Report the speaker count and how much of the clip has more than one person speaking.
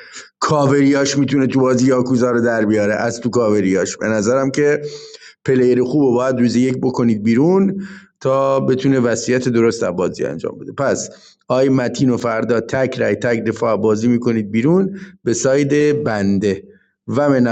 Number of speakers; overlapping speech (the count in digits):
1, no overlap